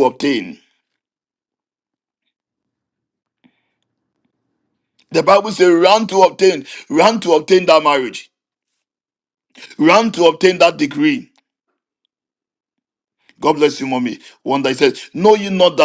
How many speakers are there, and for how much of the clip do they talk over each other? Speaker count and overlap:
1, no overlap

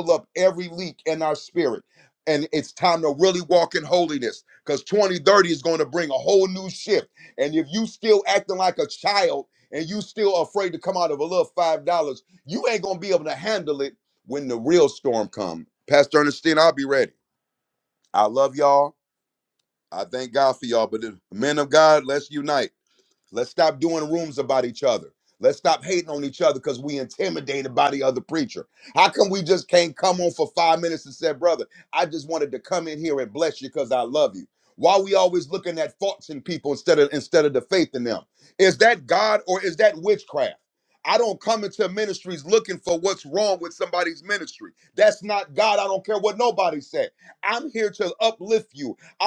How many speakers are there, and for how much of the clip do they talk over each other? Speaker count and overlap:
1, no overlap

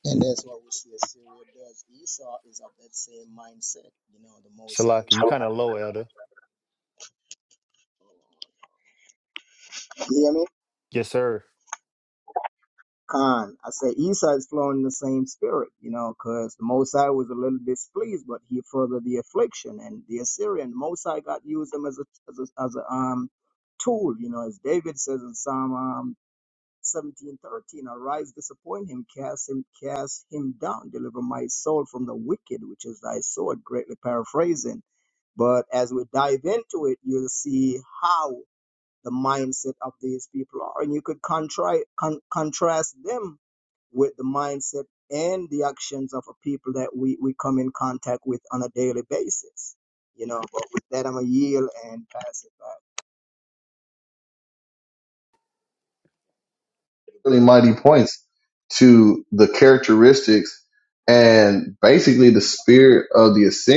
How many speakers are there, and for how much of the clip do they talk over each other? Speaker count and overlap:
3, about 1%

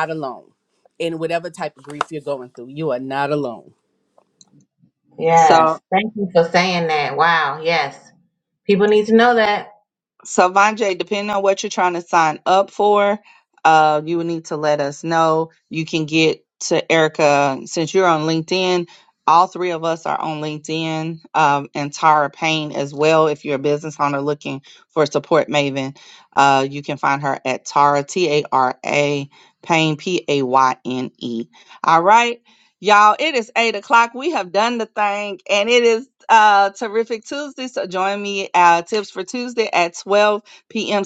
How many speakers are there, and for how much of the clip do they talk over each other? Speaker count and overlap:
3, about 1%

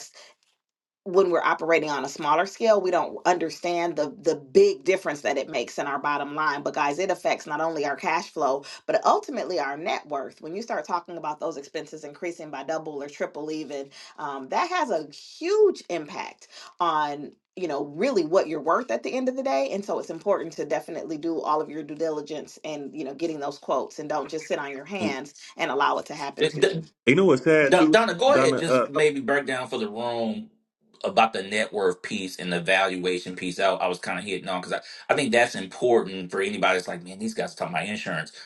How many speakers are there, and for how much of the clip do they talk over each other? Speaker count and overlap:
3, about 3%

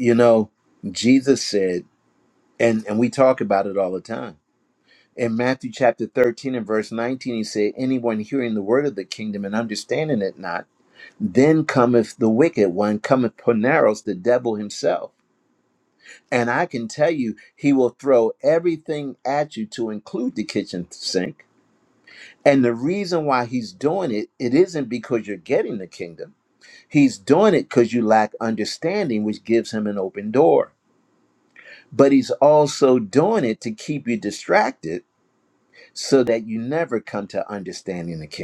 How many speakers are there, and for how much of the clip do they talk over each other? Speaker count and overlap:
1, no overlap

